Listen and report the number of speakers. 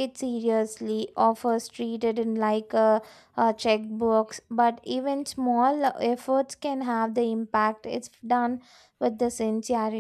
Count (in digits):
1